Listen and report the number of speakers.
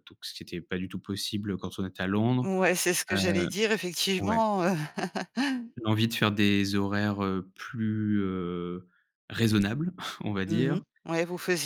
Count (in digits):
2